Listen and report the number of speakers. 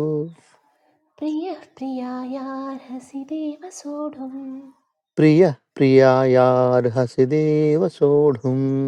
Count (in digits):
2